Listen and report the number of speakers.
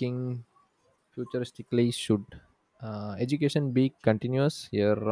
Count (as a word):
one